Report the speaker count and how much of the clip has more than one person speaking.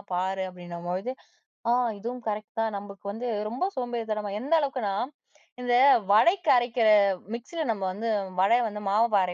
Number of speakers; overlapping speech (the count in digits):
1, no overlap